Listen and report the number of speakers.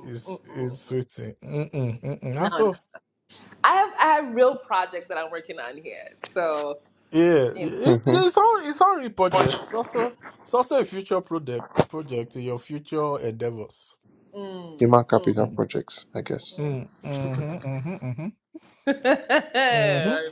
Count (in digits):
3